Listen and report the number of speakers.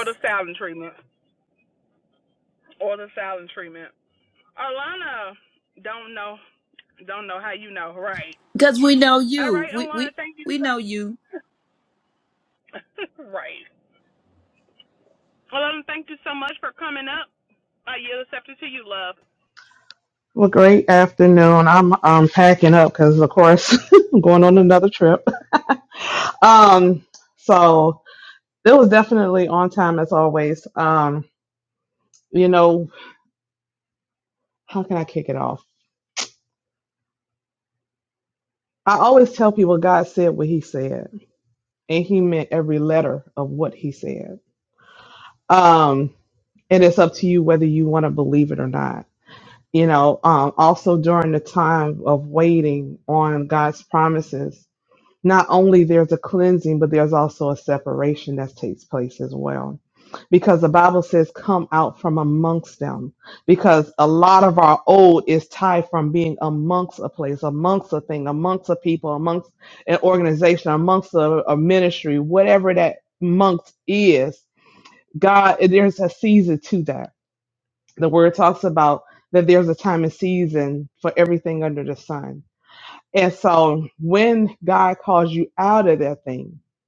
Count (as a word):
three